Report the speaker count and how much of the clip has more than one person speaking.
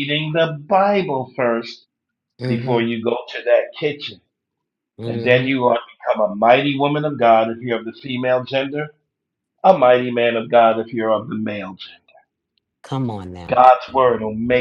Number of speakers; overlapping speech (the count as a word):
two, about 6%